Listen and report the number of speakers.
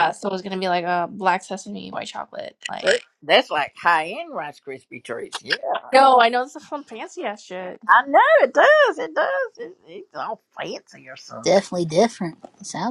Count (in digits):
3